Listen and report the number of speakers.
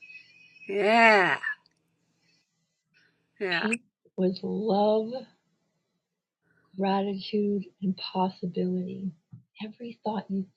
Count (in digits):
2